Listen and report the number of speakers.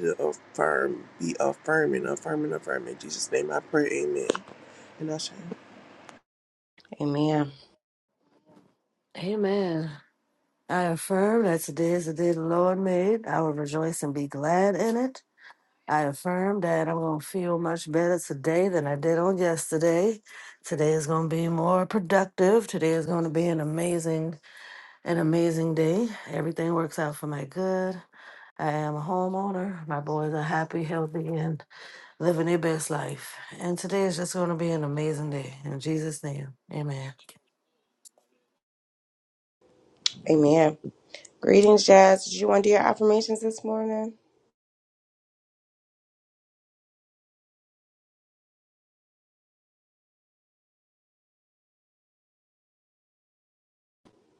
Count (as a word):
three